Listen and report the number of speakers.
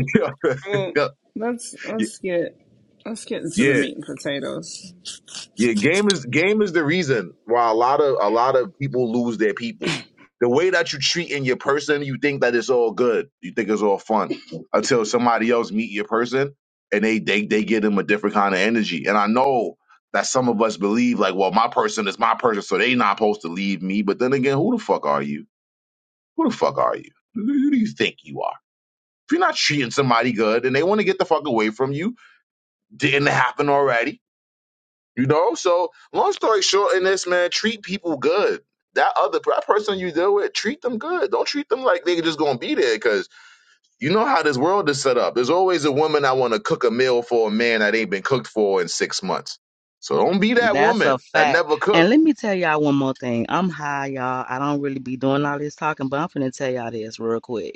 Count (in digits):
3